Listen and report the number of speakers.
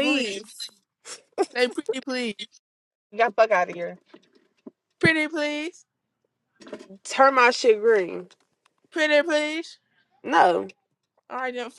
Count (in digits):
2